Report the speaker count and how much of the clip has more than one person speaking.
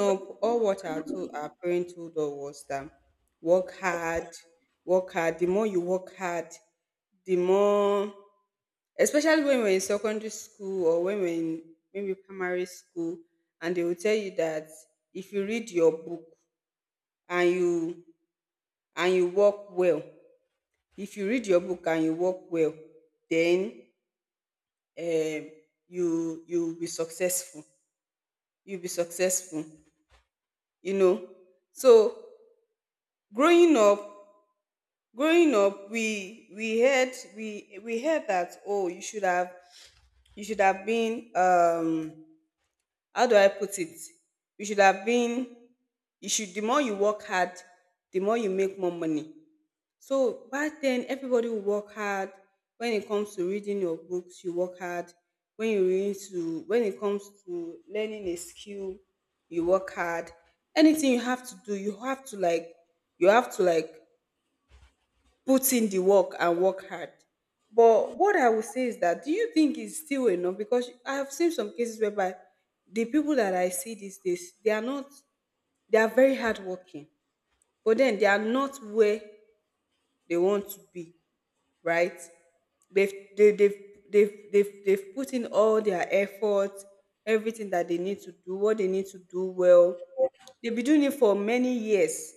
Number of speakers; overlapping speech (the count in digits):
1, no overlap